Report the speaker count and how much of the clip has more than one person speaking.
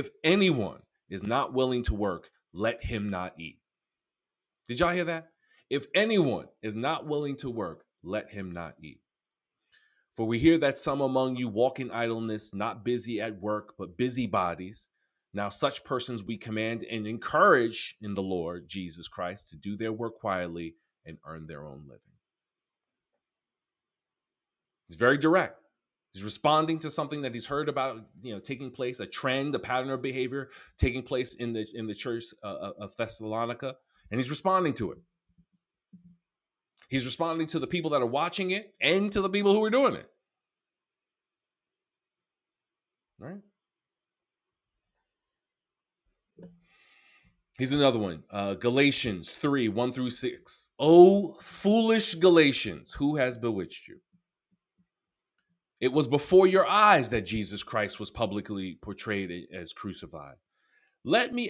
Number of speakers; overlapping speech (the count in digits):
1, no overlap